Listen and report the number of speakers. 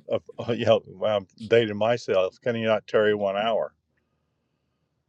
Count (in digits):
1